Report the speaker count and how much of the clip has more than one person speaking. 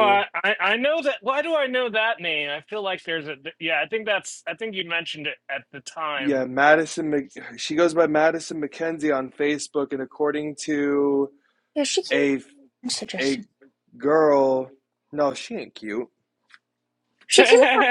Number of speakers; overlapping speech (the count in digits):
3, about 4%